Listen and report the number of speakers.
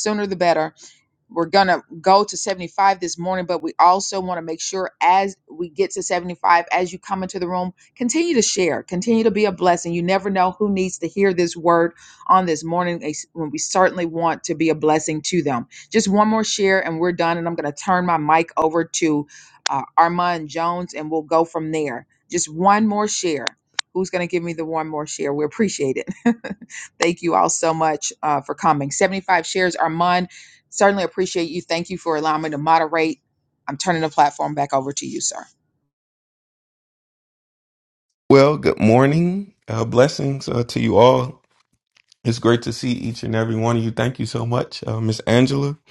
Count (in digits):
2